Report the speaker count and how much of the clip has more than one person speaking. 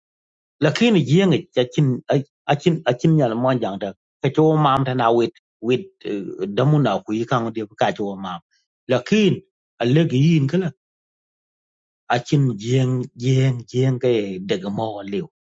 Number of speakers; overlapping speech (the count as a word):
one, no overlap